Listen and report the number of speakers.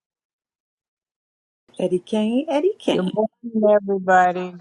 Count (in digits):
2